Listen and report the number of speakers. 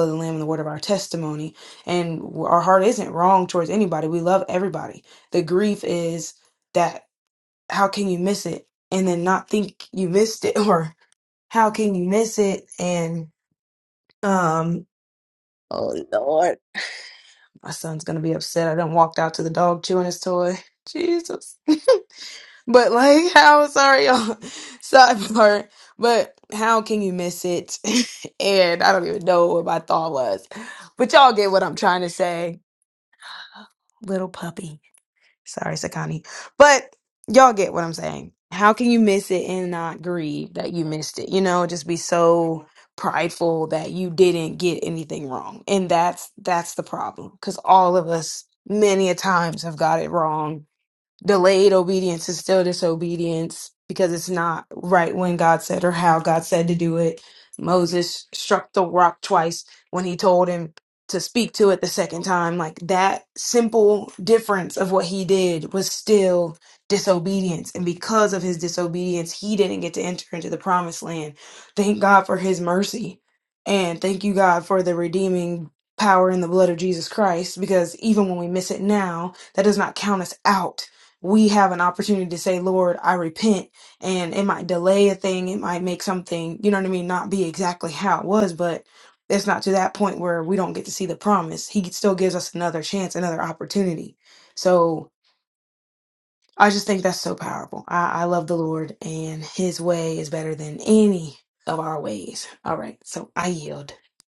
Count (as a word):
one